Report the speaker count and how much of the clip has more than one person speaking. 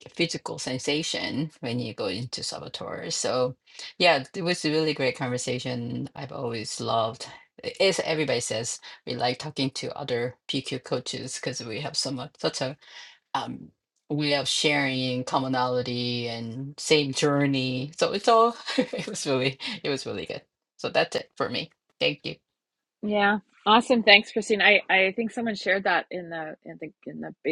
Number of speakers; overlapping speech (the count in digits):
2, no overlap